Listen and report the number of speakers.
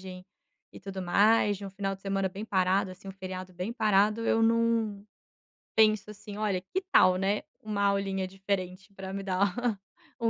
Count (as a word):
one